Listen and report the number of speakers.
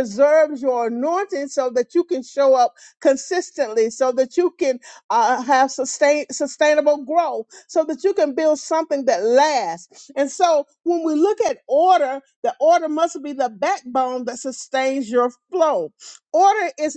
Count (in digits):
1